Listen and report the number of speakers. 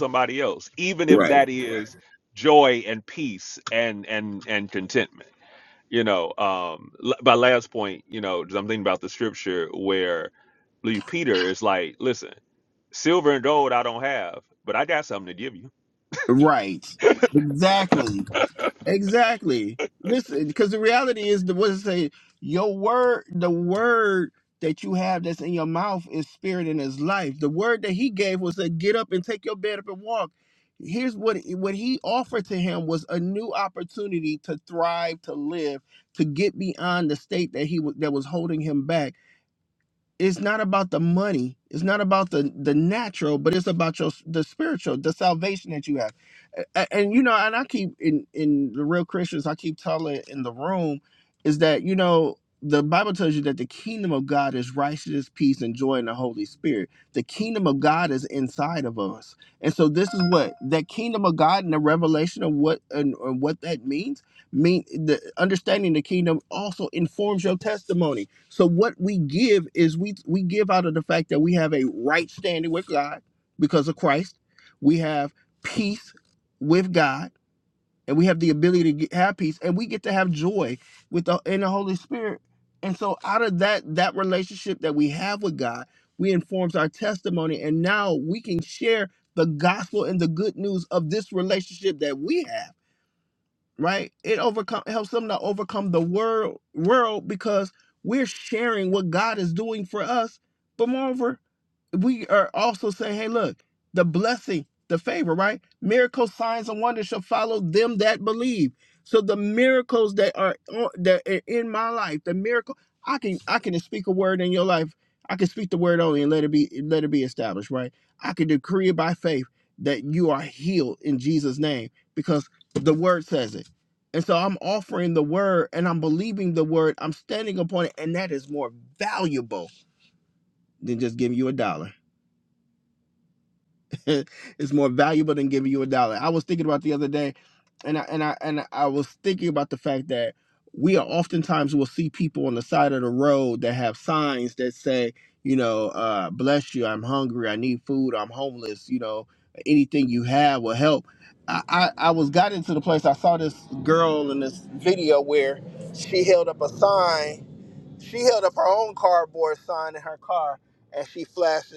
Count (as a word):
two